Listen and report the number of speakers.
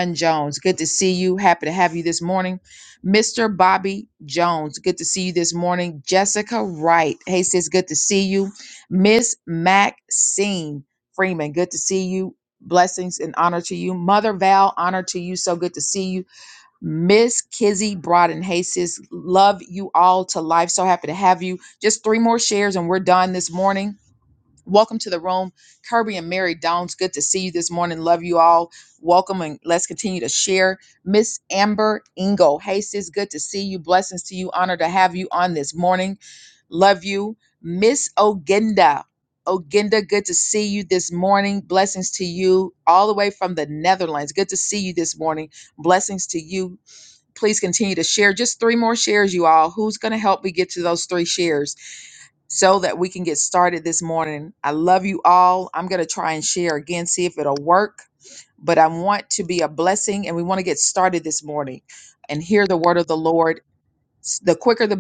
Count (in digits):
1